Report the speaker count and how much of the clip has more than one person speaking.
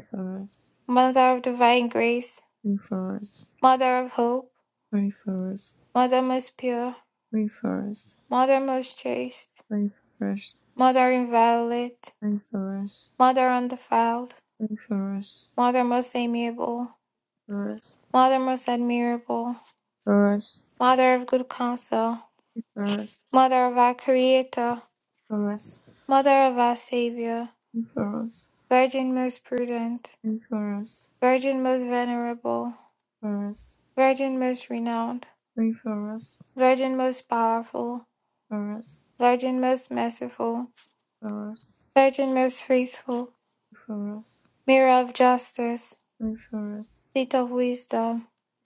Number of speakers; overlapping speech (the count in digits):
2, no overlap